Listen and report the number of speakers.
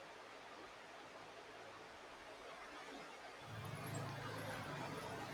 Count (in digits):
0